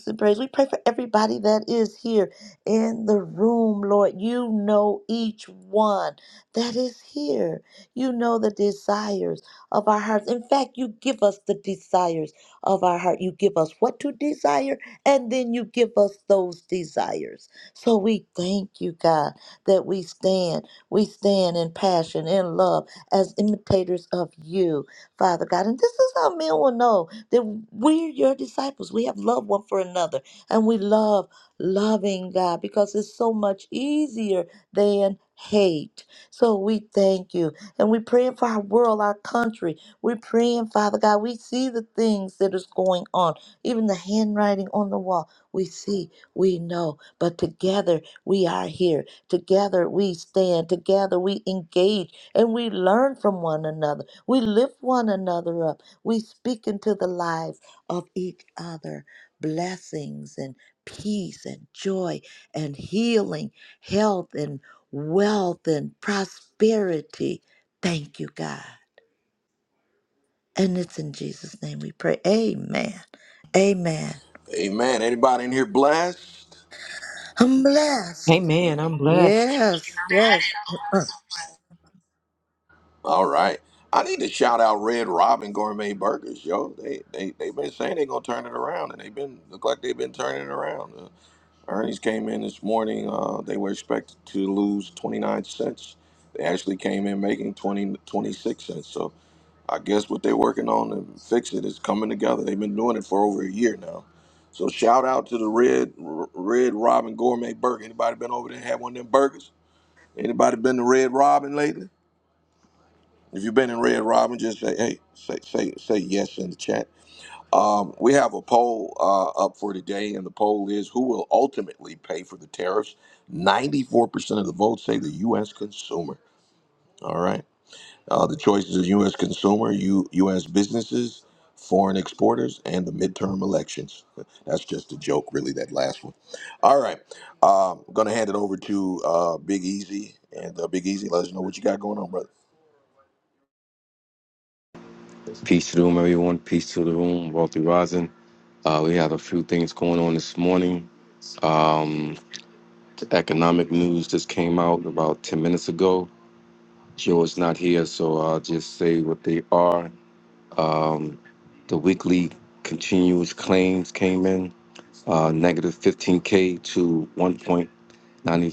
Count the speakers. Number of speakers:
five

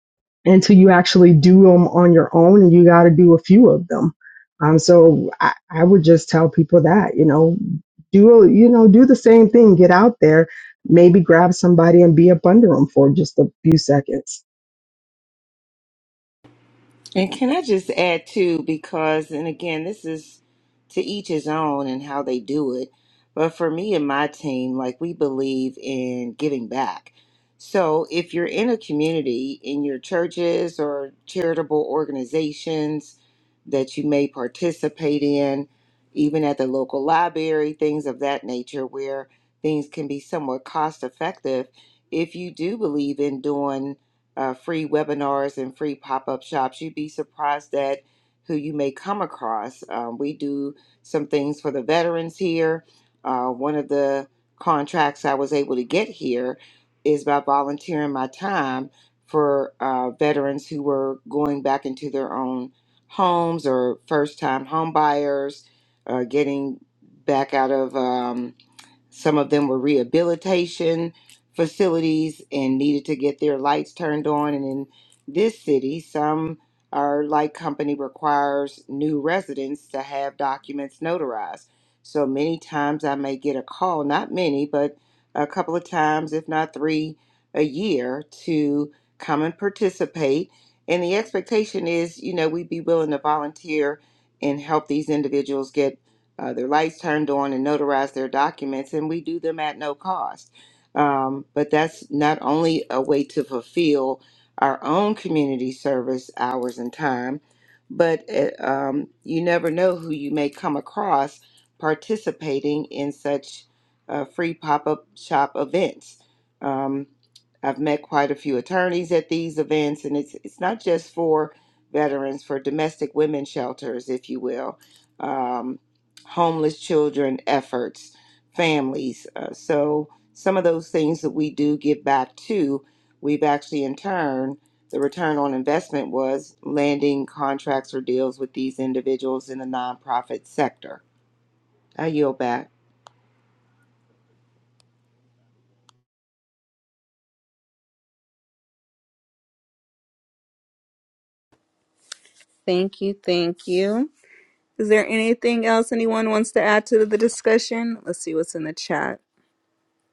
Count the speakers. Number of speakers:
three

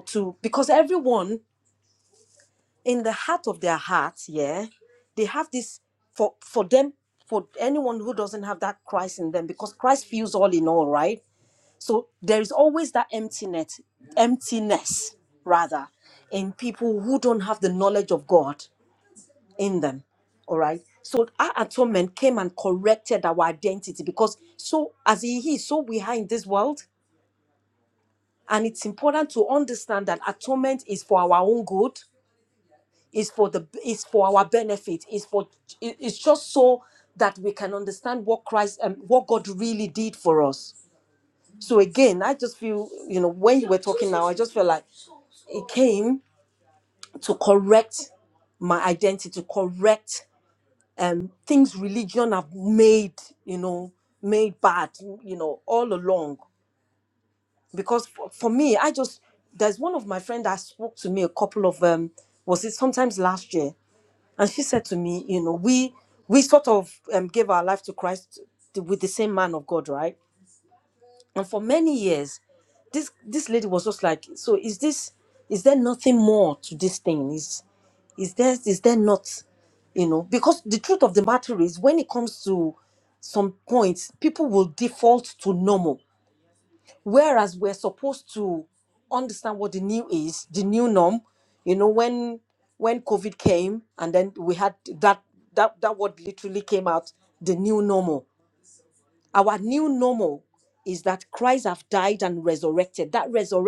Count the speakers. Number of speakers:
one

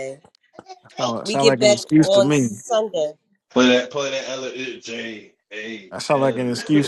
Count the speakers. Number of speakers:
three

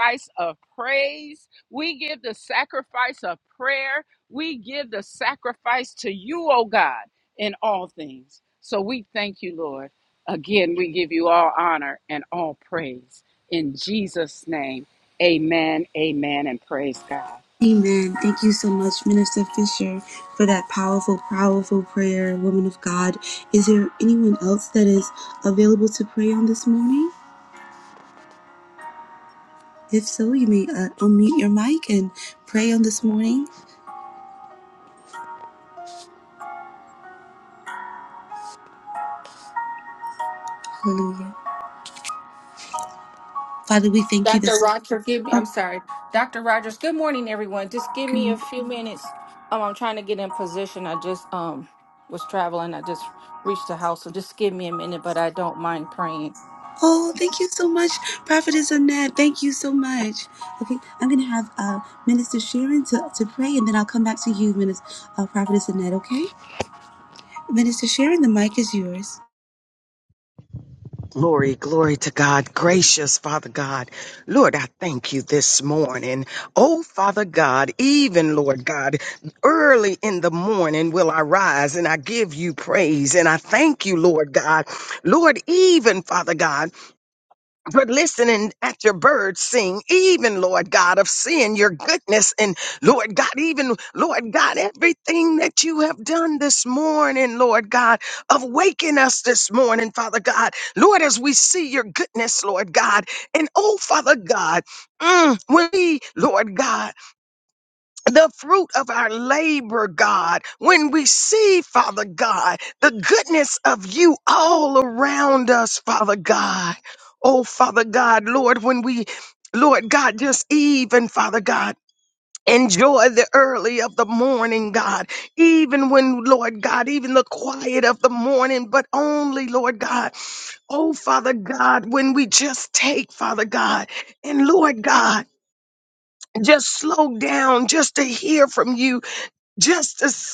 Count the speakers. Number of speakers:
four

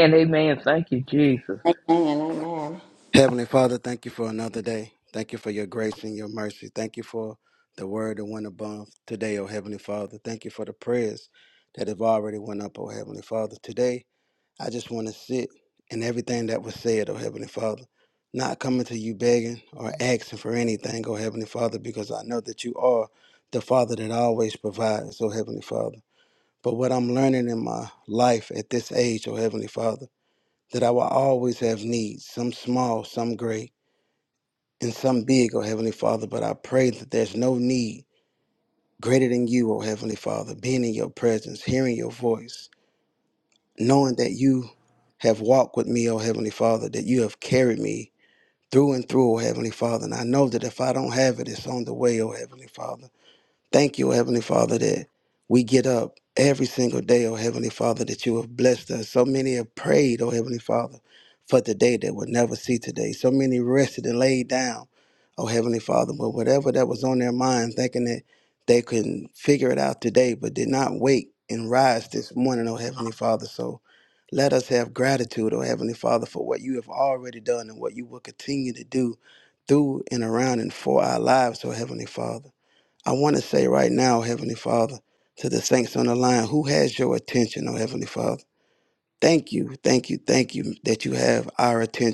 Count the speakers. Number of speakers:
three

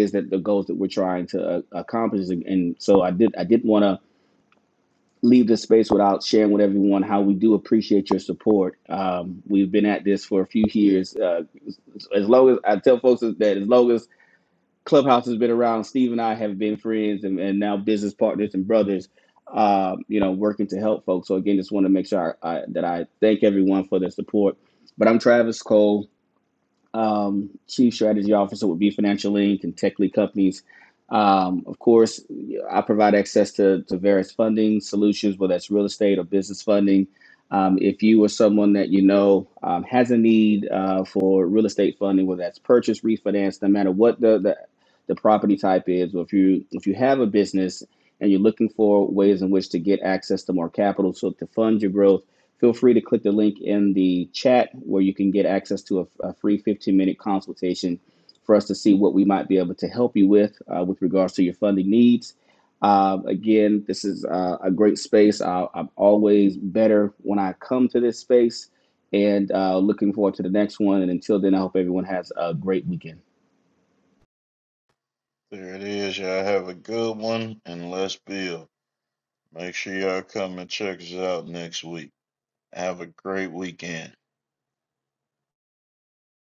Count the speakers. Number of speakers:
two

